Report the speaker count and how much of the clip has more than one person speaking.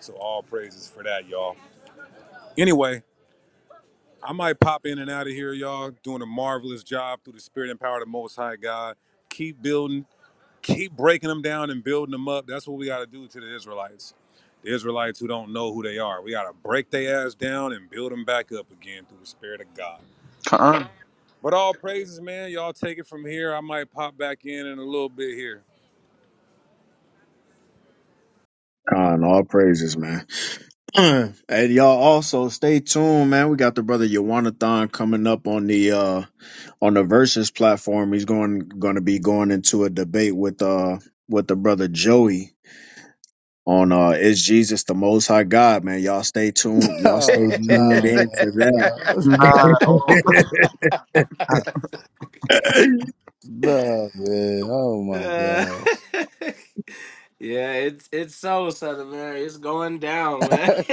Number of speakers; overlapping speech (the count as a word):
five, about 4%